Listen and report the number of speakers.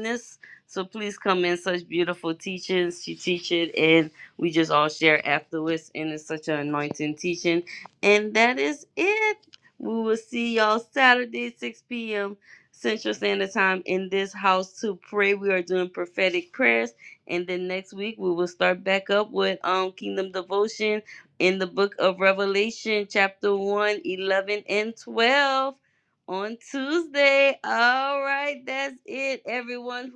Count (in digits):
1